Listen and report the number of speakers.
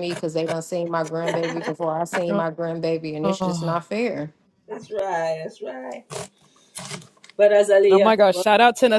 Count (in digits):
3